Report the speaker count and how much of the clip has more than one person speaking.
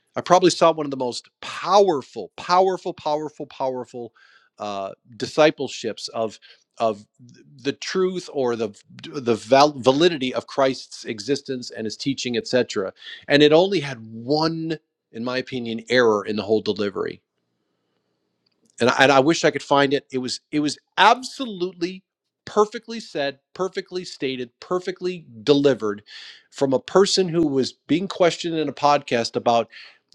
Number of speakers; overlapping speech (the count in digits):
1, no overlap